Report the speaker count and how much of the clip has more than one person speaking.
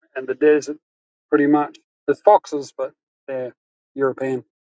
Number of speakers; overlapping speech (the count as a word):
one, no overlap